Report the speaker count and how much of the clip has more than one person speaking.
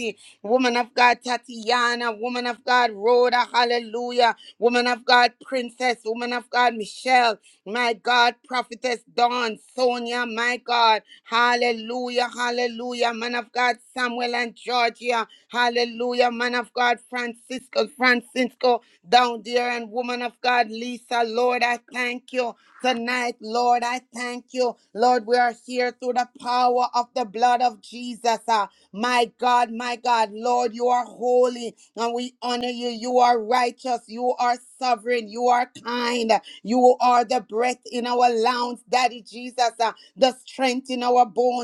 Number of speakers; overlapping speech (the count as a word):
one, no overlap